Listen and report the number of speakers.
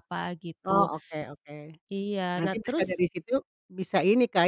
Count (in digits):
2